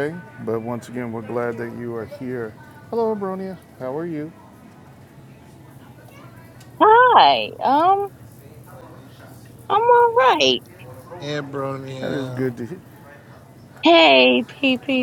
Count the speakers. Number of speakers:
three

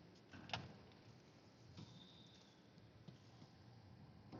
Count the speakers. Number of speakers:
zero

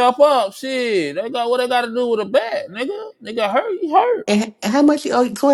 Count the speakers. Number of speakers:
two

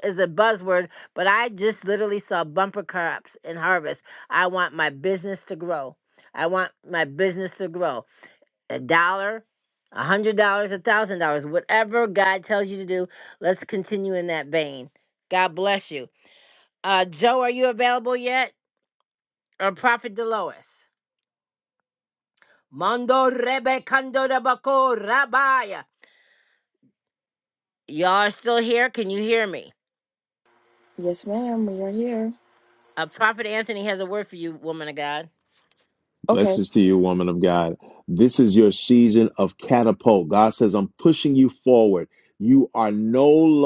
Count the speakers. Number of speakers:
three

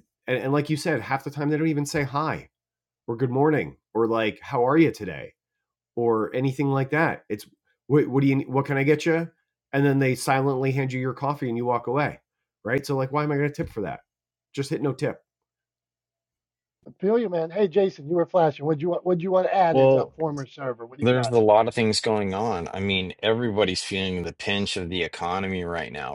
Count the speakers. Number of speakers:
three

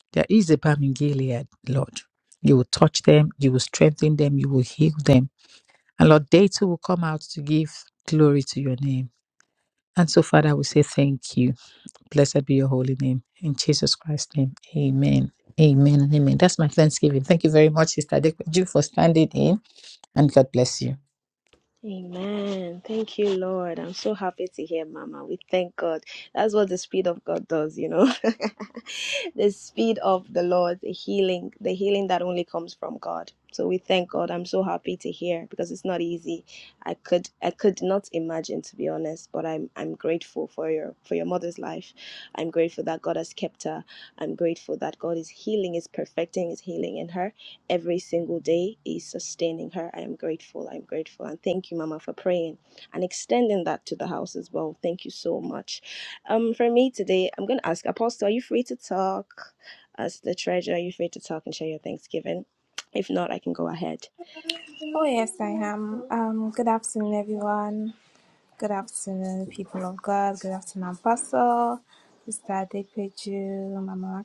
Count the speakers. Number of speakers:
three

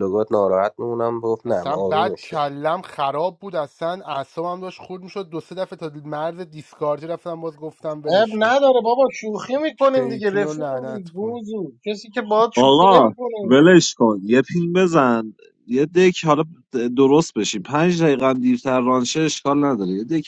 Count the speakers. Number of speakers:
four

